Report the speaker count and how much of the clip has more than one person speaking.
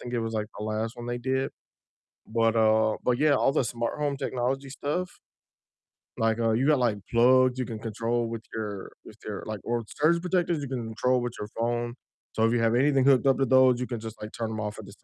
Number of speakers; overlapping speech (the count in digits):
1, no overlap